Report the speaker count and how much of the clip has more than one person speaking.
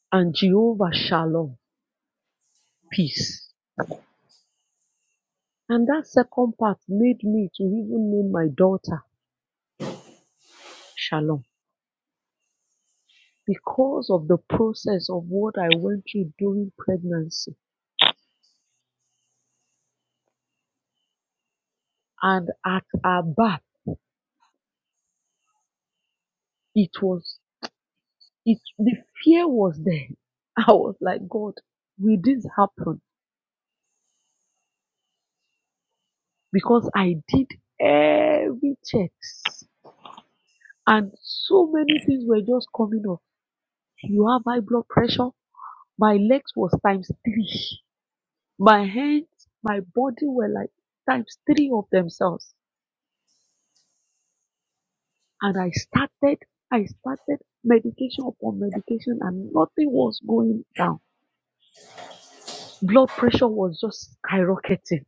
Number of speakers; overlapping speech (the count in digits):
1, no overlap